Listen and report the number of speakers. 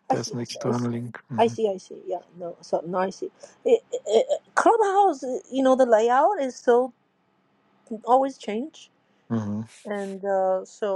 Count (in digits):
2